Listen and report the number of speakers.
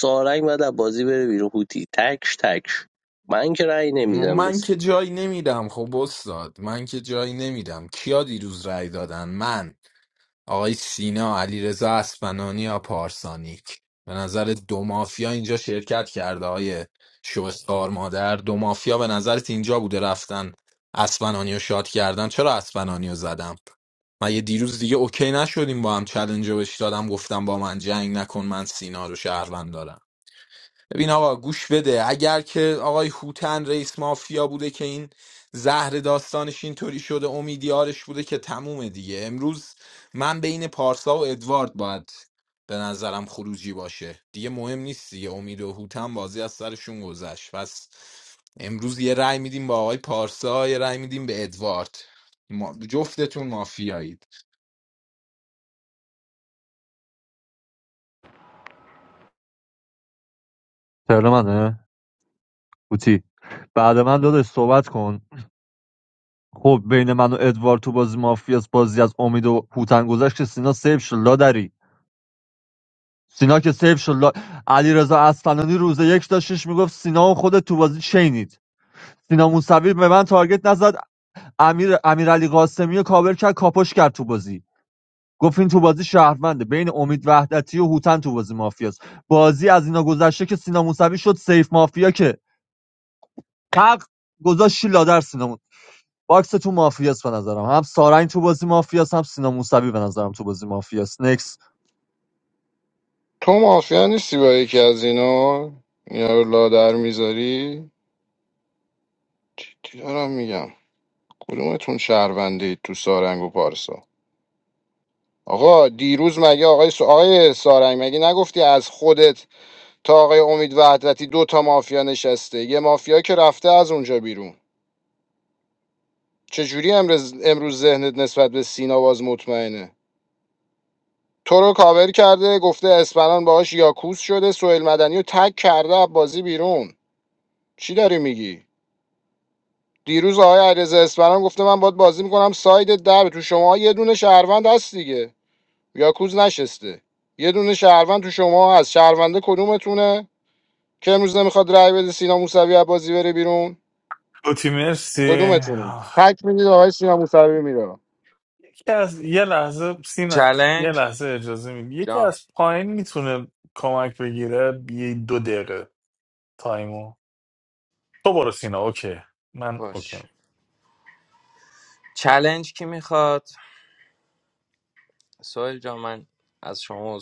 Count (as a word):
six